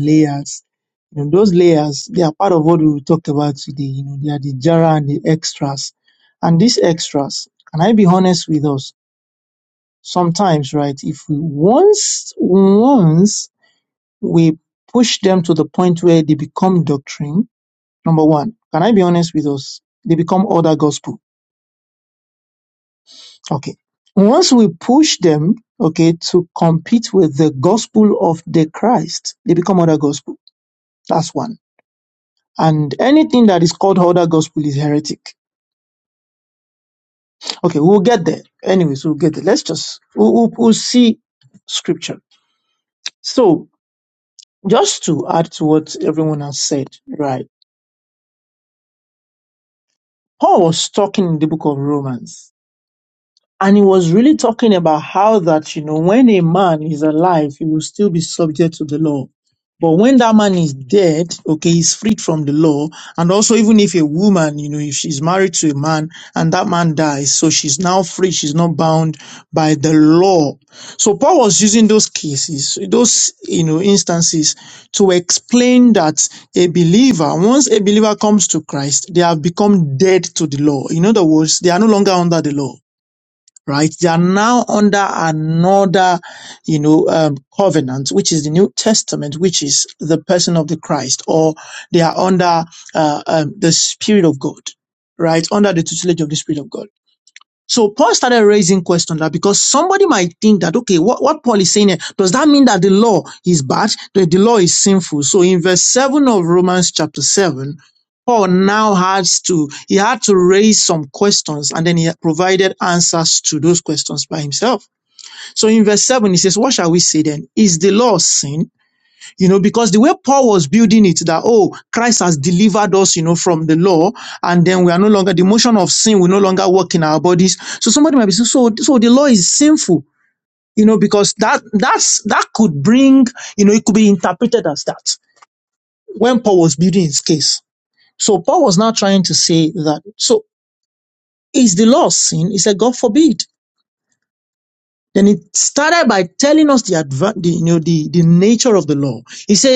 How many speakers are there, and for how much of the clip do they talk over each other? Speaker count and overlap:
1, no overlap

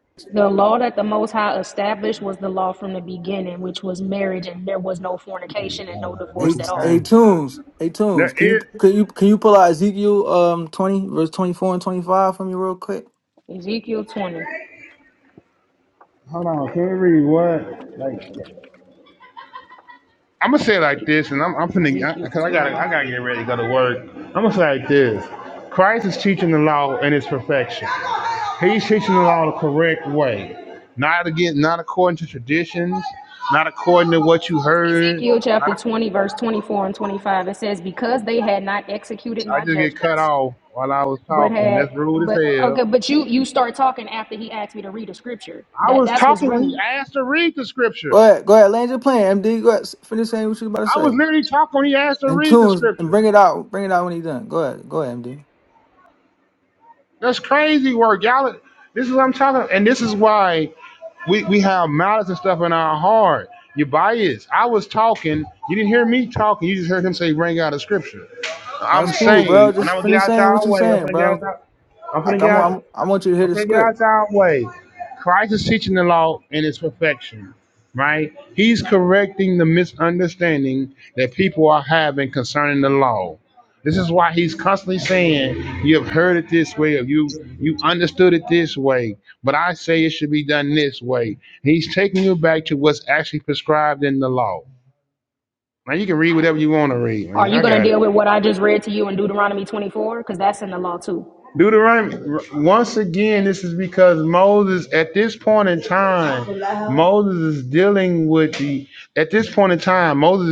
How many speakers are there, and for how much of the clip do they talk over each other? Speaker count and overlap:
3, about 10%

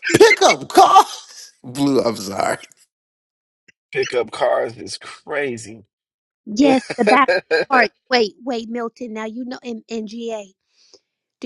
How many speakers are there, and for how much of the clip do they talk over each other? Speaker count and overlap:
3, no overlap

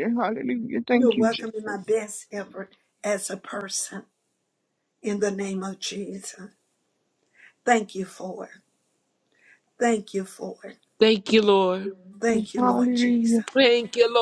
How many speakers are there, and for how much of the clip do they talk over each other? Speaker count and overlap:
3, about 14%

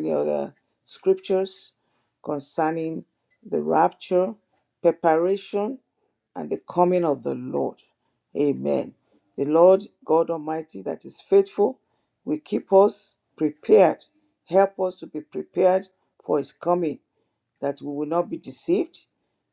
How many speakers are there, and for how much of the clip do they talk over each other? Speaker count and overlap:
1, no overlap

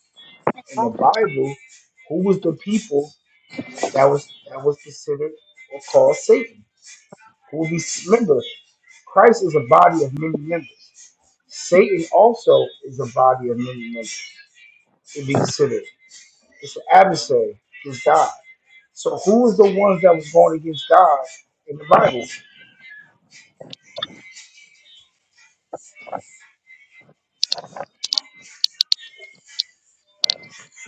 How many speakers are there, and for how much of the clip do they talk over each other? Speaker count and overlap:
1, no overlap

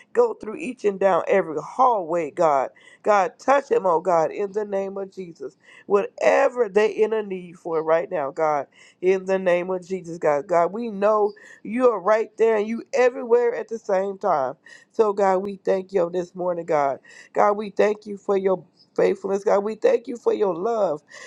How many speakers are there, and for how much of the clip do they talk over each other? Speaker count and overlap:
1, no overlap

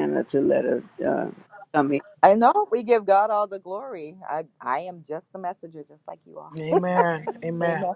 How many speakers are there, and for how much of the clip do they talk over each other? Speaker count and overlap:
3, about 3%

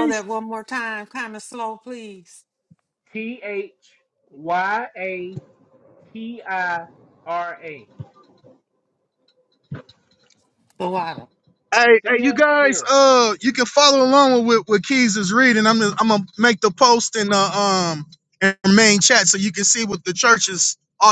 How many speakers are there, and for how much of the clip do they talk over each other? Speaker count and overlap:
3, about 5%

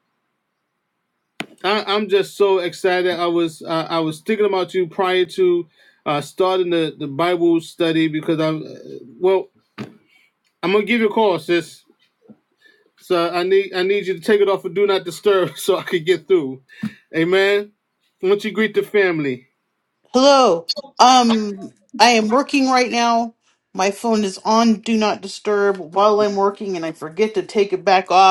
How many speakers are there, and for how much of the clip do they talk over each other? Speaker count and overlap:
2, no overlap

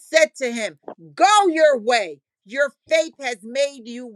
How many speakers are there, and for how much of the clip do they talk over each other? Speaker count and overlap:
1, no overlap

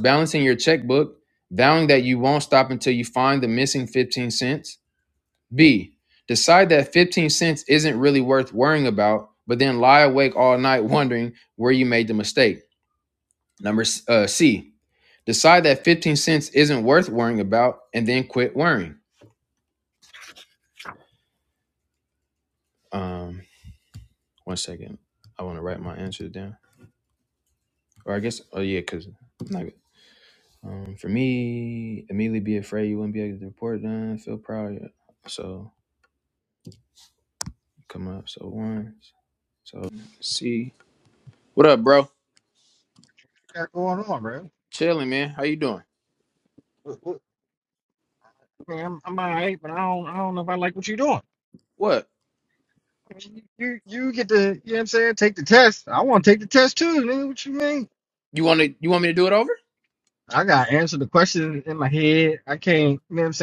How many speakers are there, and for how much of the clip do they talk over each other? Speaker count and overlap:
2, no overlap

